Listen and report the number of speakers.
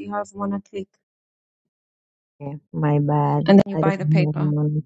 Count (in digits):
2